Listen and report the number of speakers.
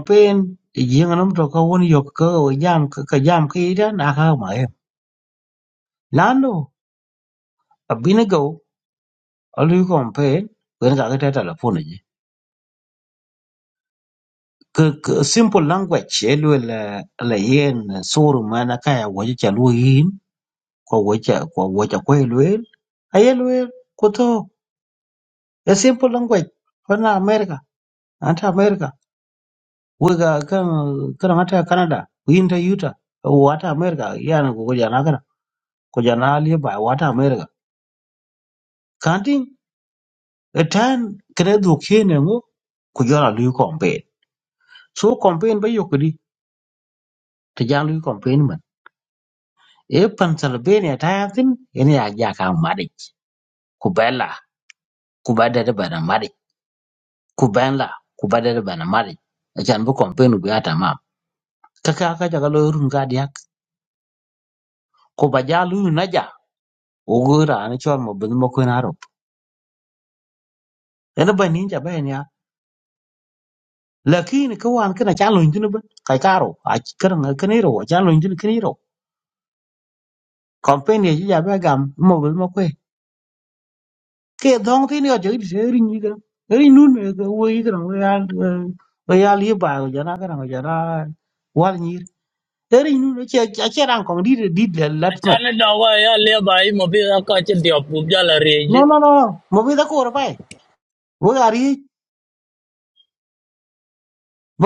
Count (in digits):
2